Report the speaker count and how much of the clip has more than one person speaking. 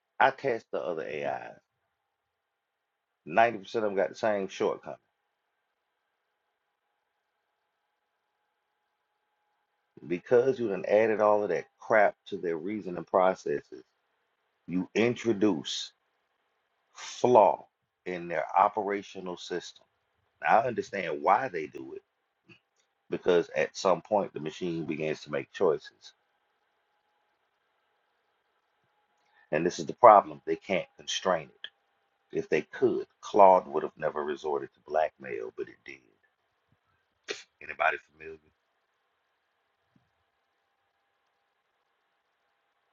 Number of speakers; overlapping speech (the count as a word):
one, no overlap